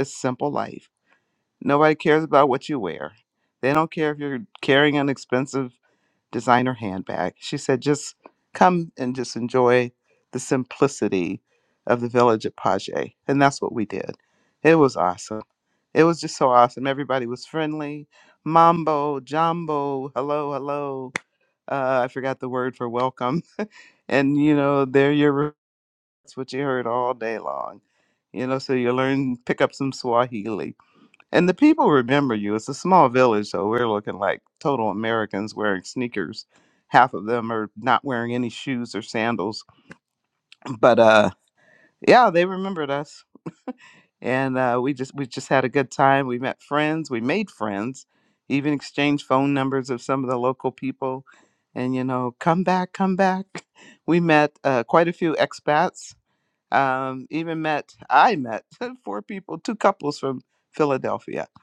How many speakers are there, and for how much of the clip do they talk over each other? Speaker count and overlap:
one, no overlap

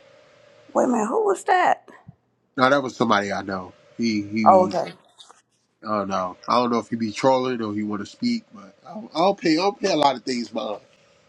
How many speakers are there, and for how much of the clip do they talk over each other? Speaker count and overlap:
two, about 3%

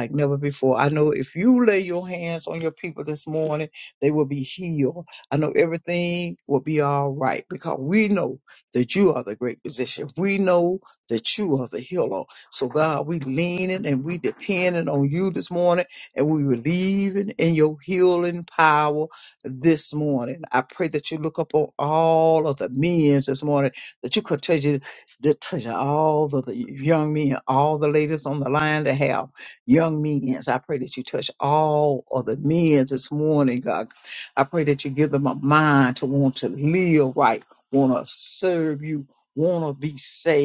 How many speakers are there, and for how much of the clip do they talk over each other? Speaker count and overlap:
one, no overlap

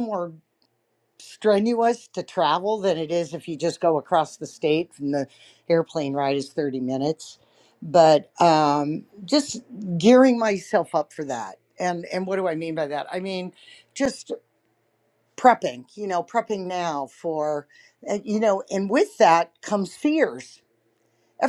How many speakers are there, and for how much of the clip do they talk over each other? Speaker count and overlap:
one, no overlap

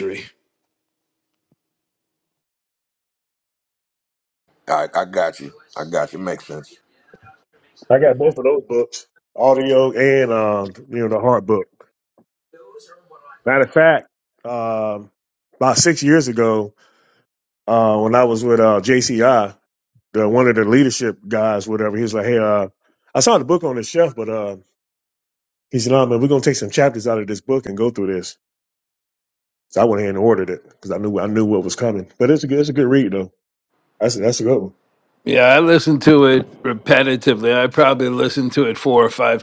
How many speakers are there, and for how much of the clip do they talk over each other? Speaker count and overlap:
three, no overlap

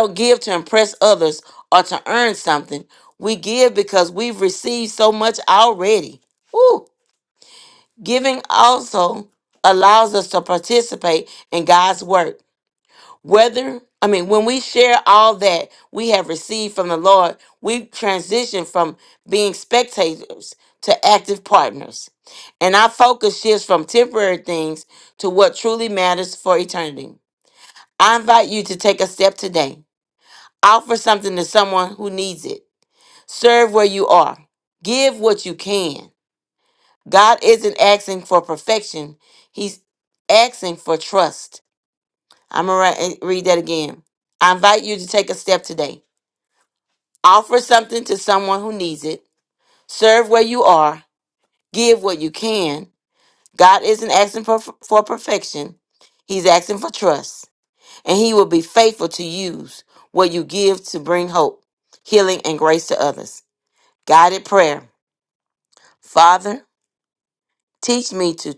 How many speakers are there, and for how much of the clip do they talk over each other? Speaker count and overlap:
one, no overlap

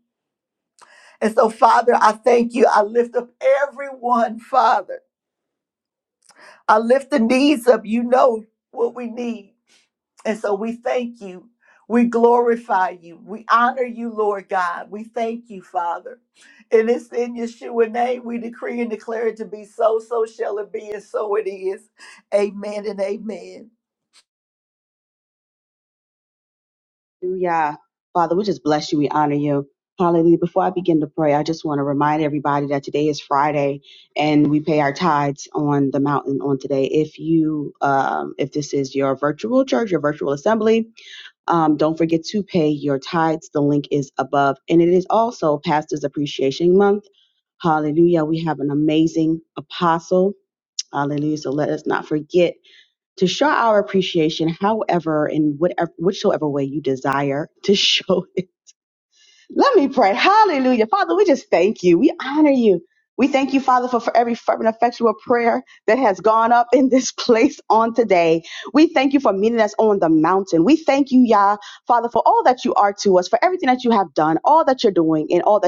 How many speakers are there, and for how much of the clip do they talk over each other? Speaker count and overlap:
two, no overlap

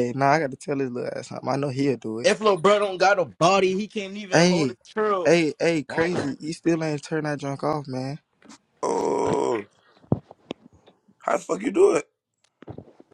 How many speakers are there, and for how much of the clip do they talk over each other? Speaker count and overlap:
three, about 7%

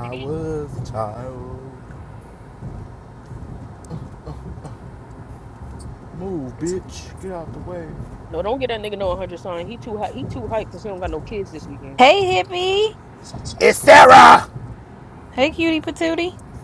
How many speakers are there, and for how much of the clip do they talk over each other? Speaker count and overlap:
three, no overlap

